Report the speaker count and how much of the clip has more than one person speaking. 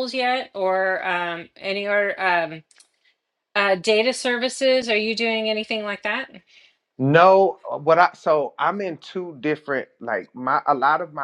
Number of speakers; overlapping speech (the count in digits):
2, no overlap